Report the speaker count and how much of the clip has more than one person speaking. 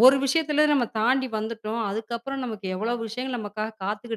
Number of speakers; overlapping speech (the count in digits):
1, no overlap